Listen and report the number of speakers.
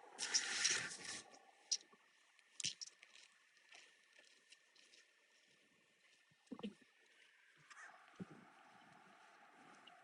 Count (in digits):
0